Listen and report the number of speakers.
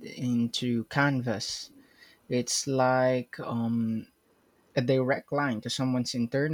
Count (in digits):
1